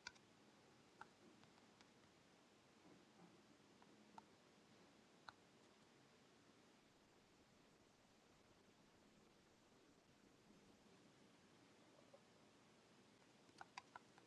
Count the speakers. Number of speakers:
zero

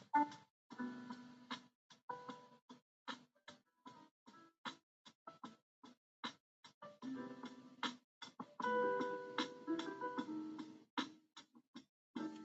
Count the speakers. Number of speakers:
zero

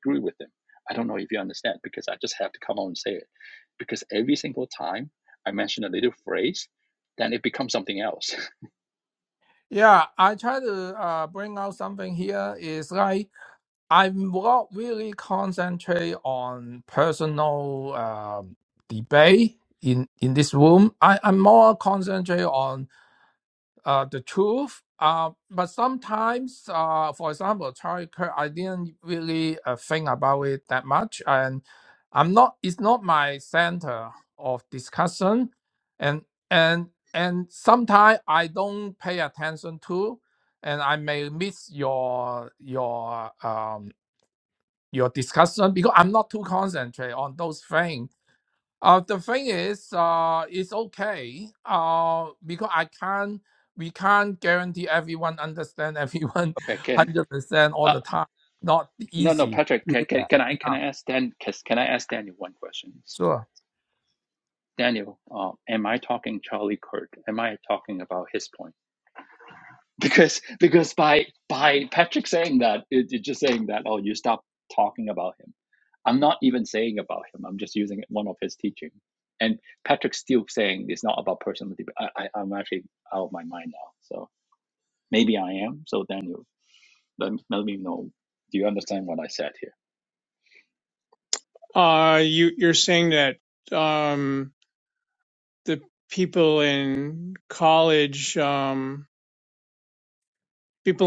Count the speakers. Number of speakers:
three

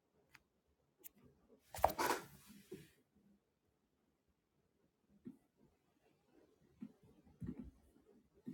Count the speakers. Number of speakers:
zero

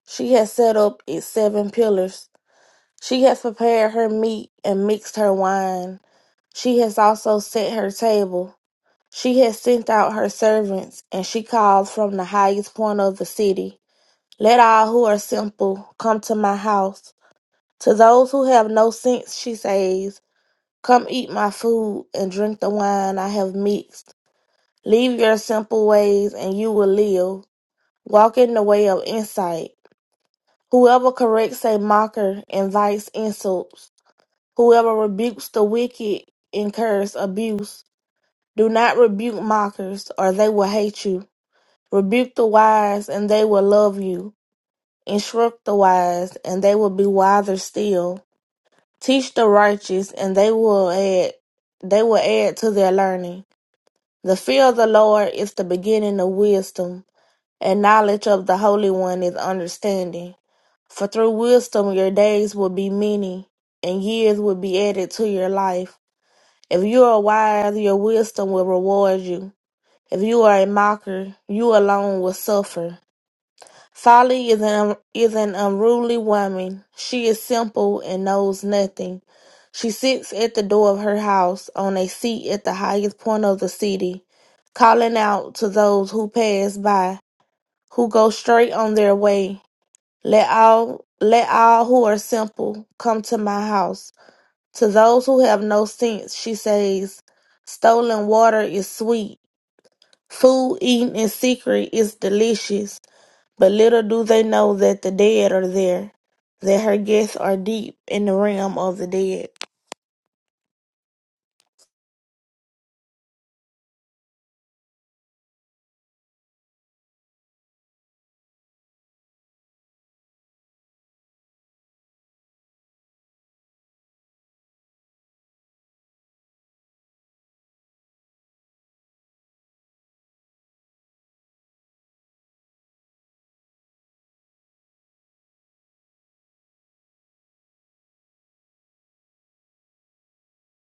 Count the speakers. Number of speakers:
one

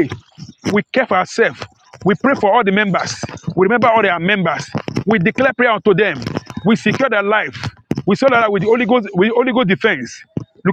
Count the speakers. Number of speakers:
one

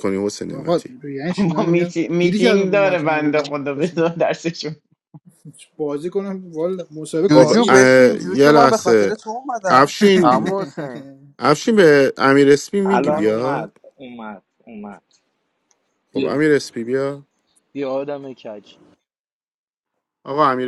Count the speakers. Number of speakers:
six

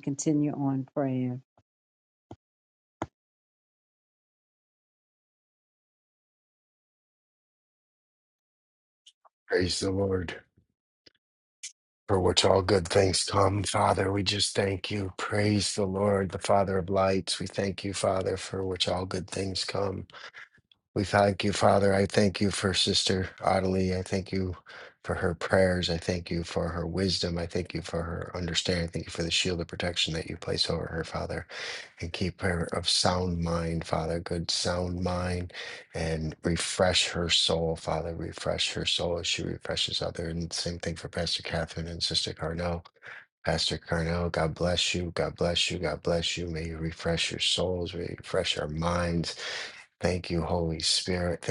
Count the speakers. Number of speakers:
two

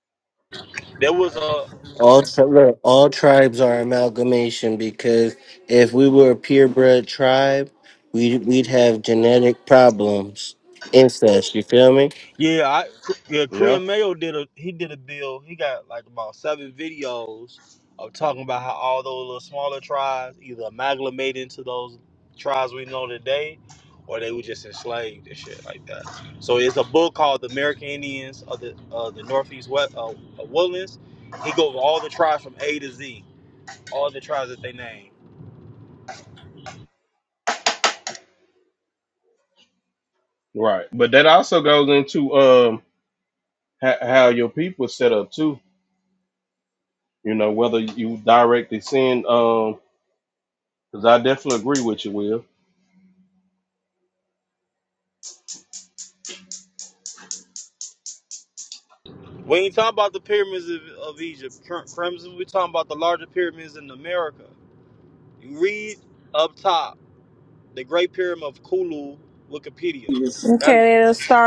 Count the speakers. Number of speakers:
four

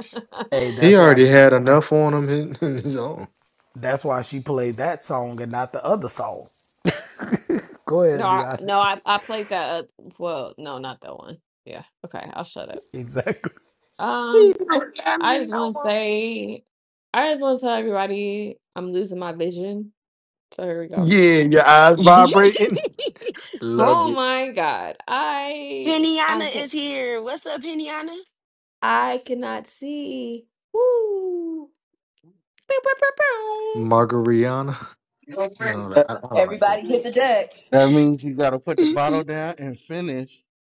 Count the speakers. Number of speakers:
six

